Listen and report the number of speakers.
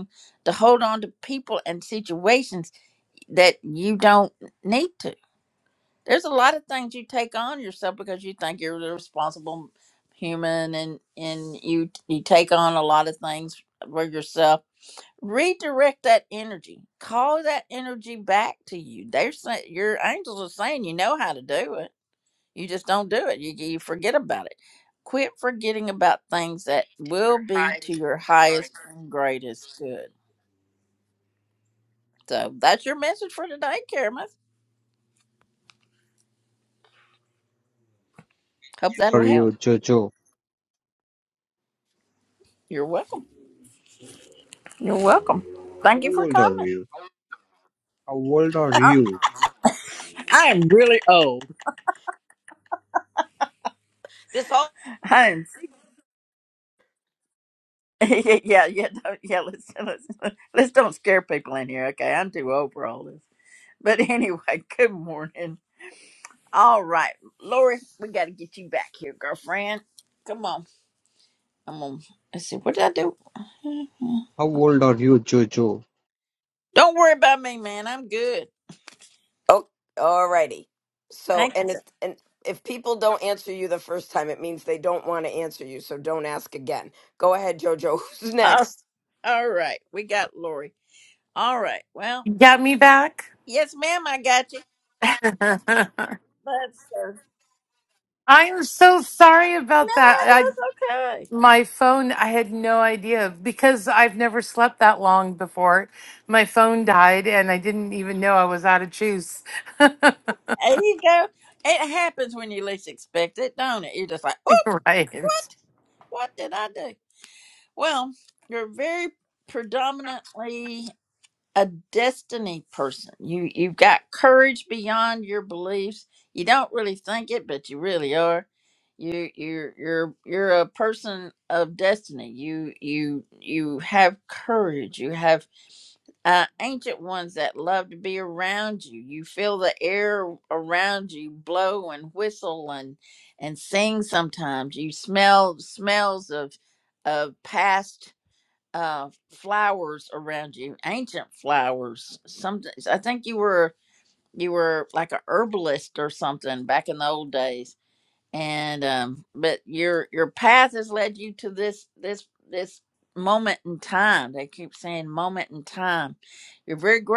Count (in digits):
4